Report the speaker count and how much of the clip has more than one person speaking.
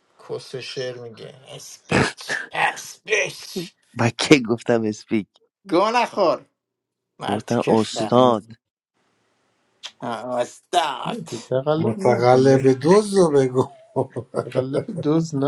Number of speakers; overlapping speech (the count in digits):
4, about 15%